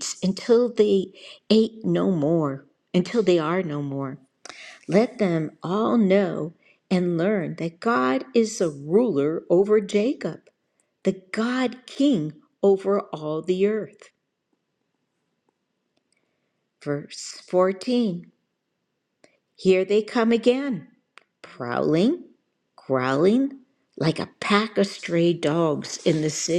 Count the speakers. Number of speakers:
1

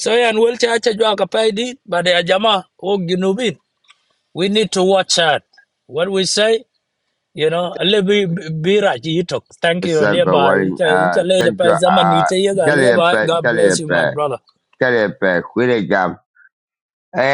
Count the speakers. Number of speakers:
2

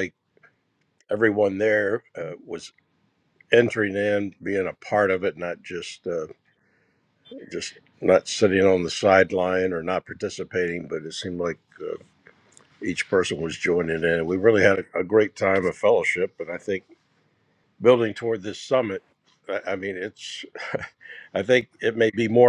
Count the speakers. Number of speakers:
1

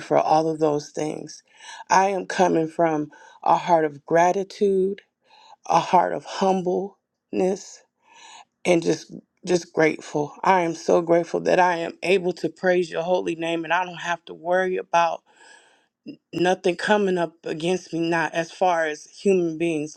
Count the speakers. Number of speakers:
1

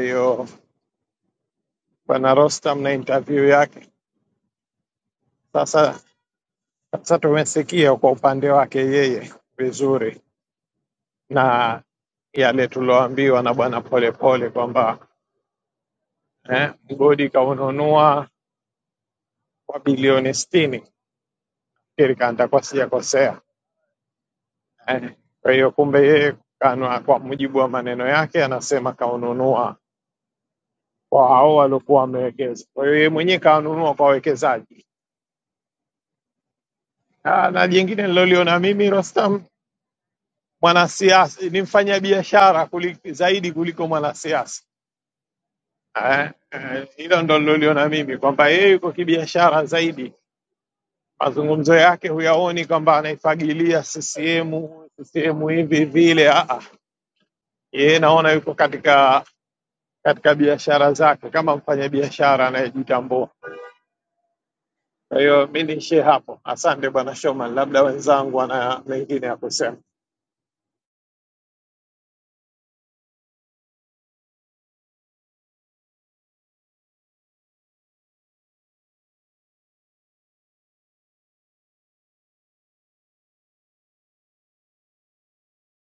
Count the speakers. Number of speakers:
1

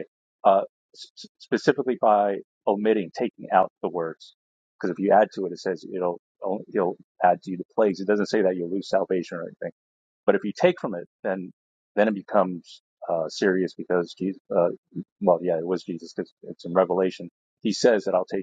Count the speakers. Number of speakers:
1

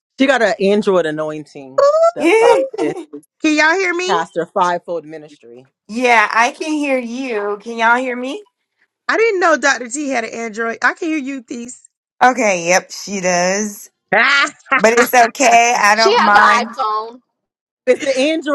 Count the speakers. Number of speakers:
4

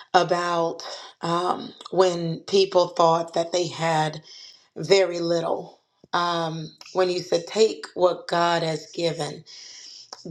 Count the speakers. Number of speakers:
1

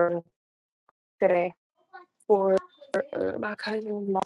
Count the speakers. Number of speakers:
1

